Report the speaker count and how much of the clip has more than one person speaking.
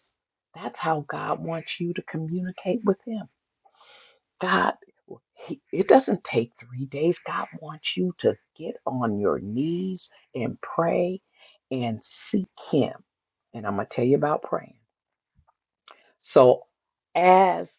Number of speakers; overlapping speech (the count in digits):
1, no overlap